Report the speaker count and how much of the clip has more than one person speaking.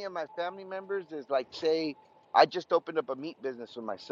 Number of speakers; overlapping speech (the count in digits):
1, no overlap